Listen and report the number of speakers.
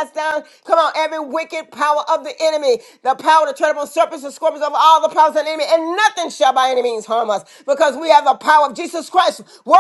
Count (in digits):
1